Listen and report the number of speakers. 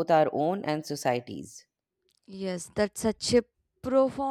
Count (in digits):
2